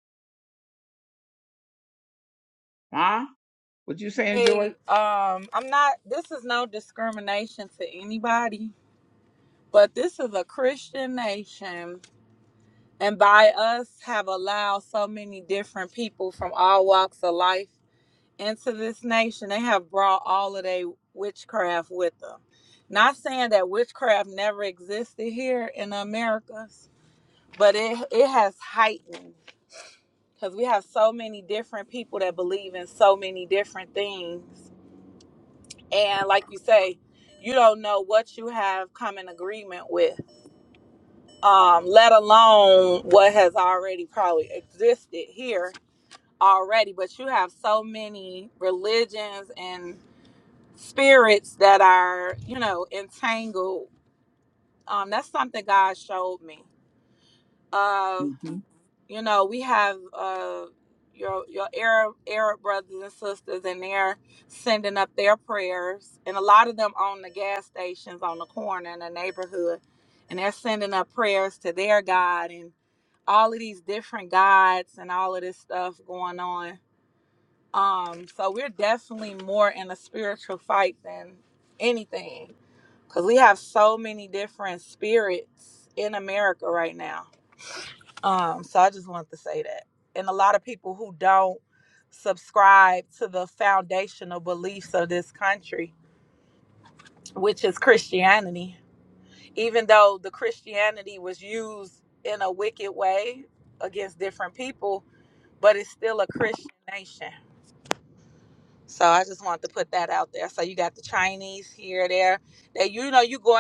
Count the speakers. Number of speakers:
2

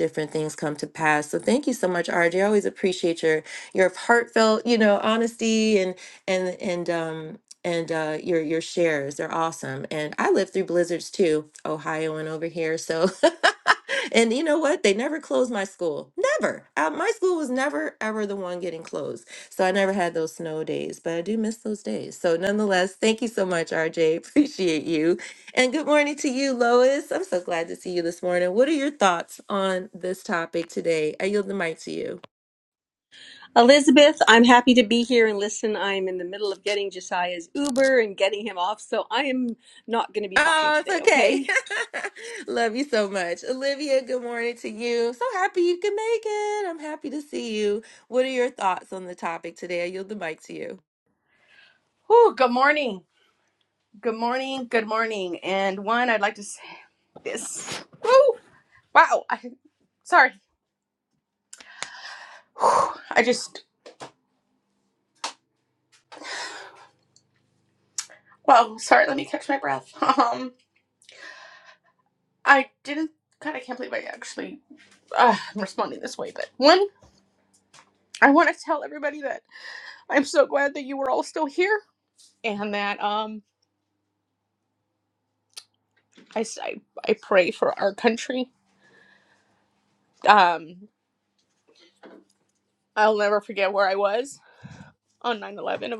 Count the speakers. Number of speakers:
3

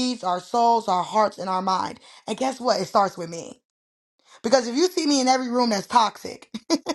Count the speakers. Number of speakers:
1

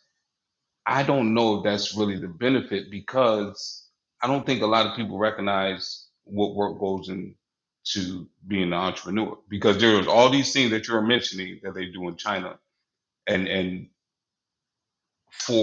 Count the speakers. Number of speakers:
1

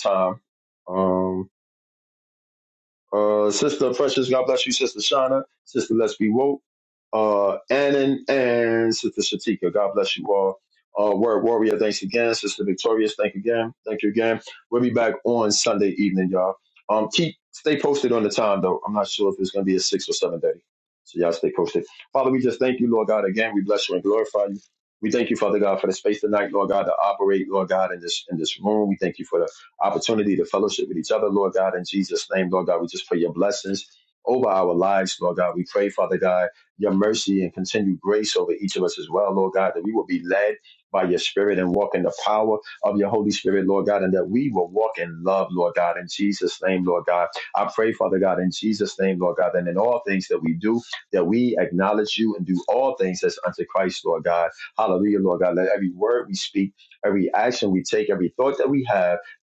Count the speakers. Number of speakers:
1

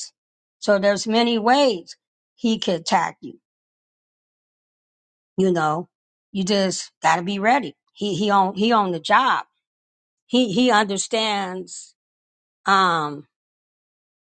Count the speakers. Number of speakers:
1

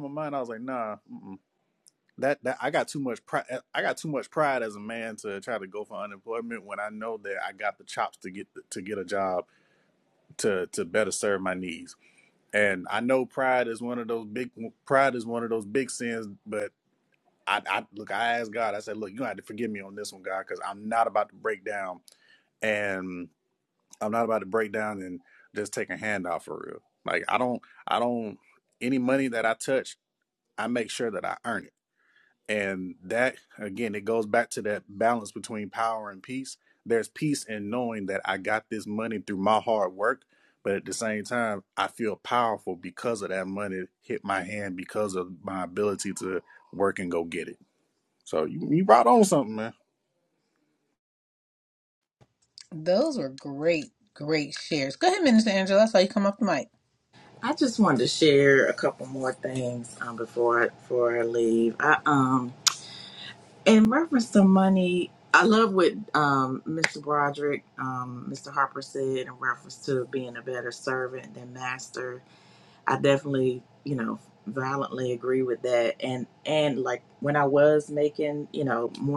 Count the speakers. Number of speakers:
3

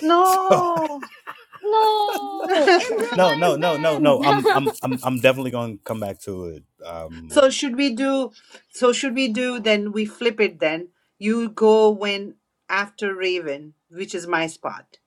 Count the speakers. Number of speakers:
3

